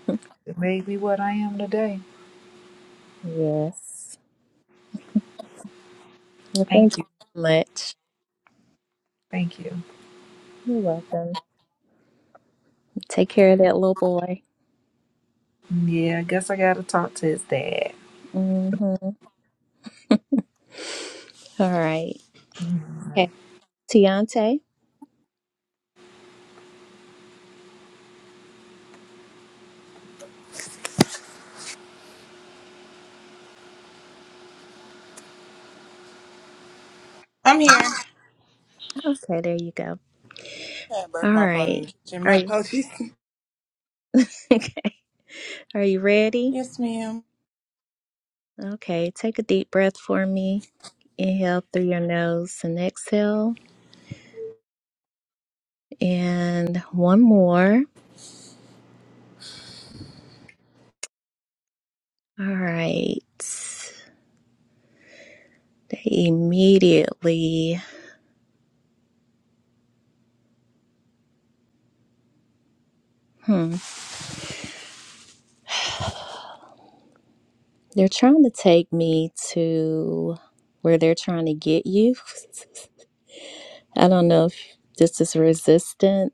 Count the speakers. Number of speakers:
three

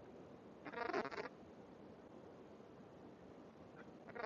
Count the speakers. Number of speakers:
zero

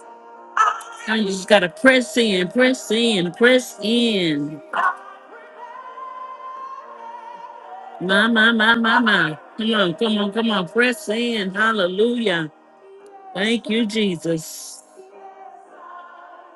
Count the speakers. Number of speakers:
one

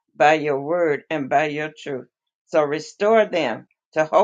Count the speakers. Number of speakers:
one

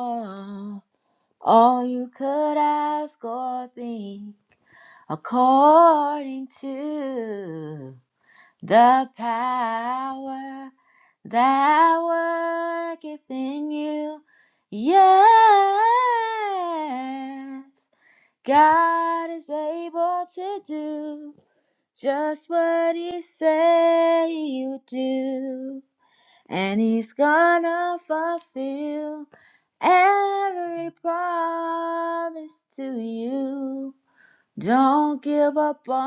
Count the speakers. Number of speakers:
one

